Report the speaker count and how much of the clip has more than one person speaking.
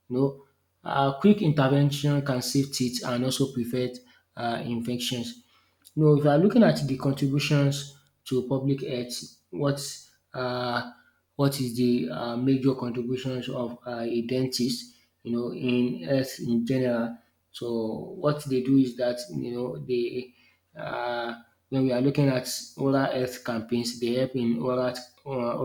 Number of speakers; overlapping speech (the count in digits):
1, no overlap